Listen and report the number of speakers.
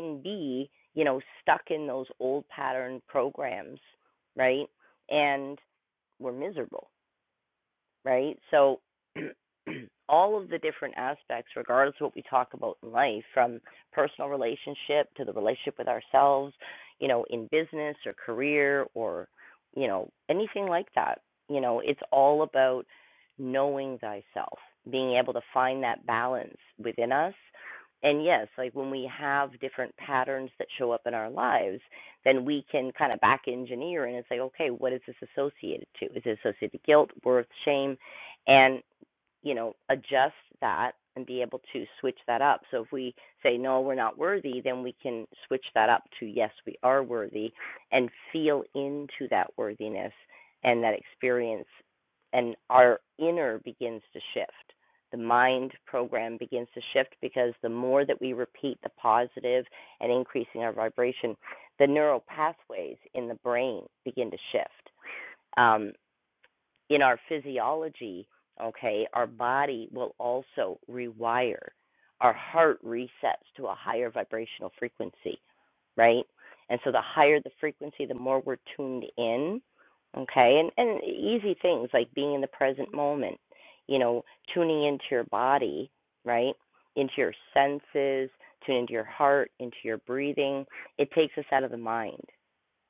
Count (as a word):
one